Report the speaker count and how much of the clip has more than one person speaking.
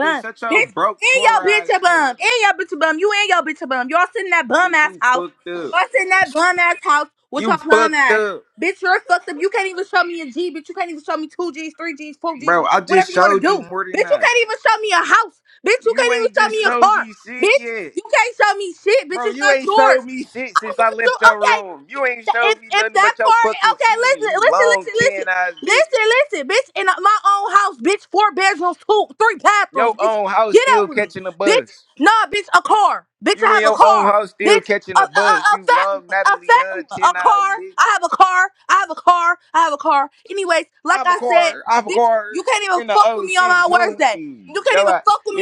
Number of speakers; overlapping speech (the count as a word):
two, about 41%